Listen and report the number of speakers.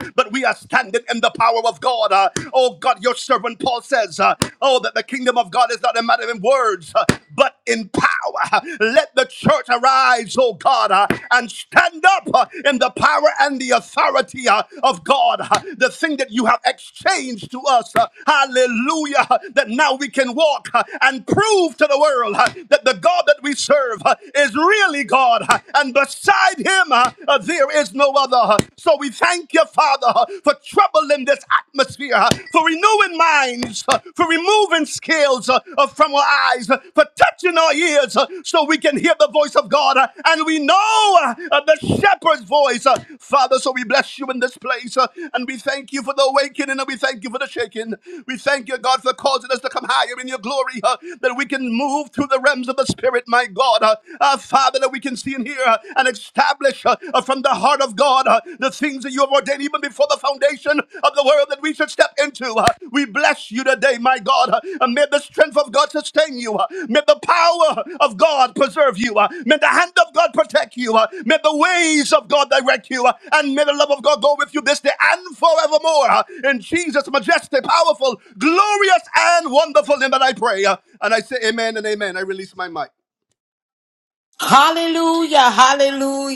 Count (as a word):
two